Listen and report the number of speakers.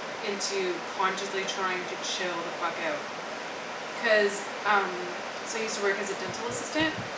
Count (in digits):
1